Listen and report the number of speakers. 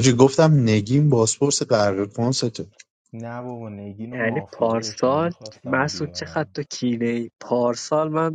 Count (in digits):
3